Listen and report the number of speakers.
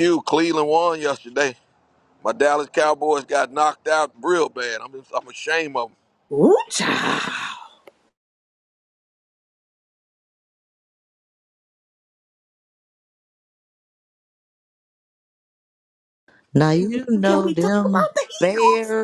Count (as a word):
three